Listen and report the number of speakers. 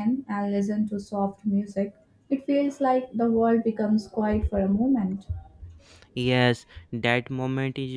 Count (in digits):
2